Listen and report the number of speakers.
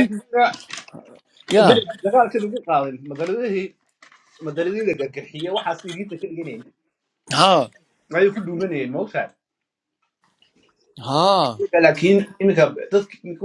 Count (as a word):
two